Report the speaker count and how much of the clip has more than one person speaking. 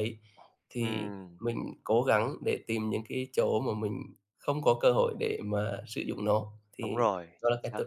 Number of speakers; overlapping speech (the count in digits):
2, about 6%